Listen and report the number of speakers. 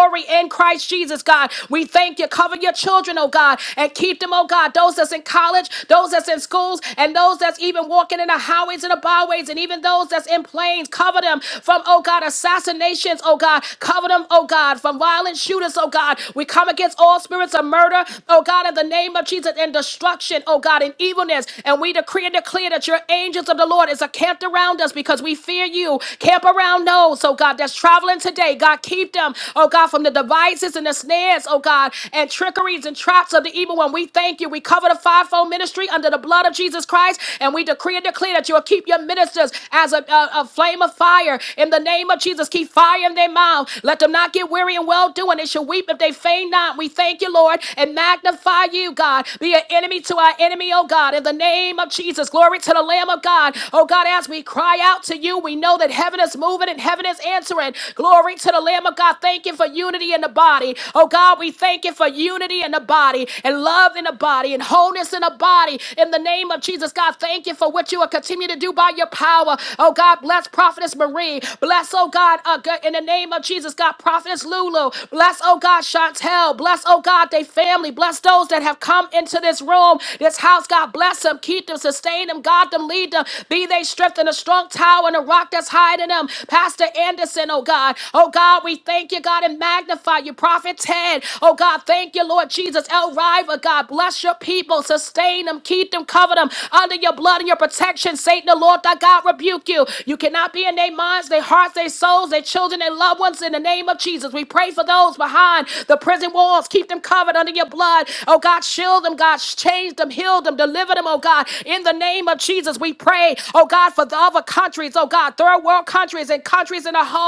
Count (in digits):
1